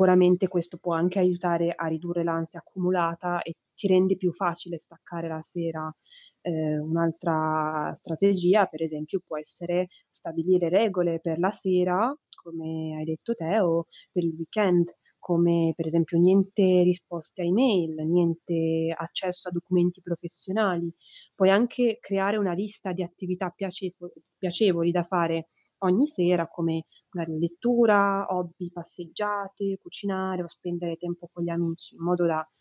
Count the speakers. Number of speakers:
1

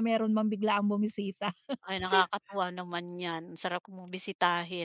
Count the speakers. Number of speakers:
2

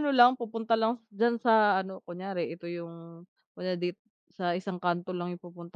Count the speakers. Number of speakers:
1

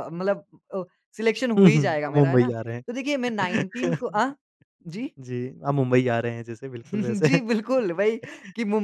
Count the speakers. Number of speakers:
2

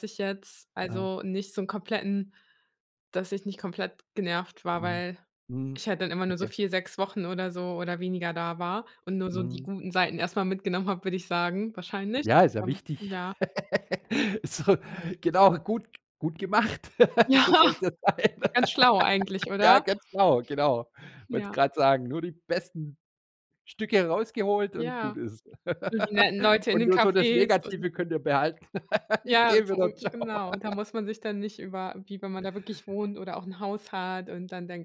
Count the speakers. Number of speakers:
2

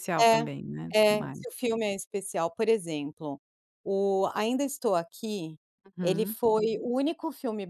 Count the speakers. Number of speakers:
2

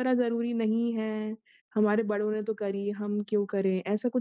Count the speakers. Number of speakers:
1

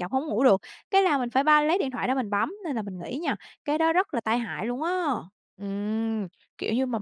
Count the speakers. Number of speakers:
2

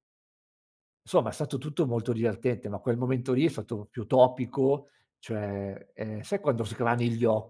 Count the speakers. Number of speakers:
1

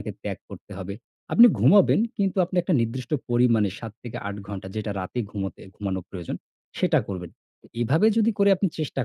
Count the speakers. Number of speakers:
1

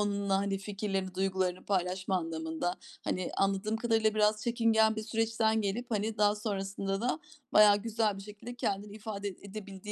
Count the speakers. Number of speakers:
1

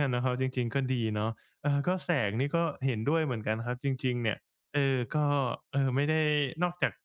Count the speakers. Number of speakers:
1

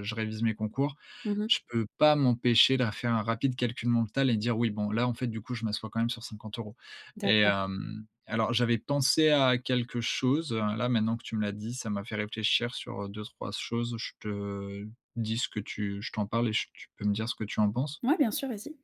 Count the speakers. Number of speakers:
2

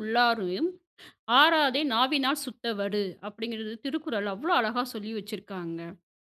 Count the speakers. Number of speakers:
1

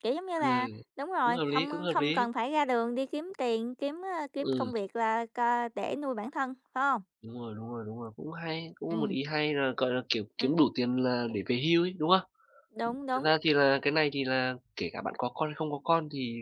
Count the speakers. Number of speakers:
2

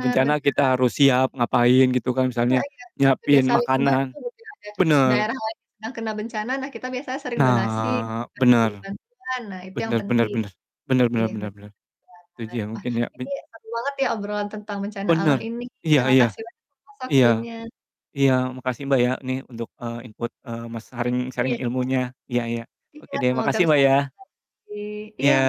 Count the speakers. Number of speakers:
2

